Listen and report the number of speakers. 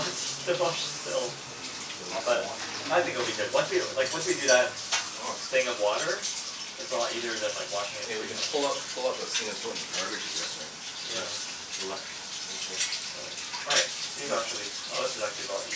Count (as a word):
two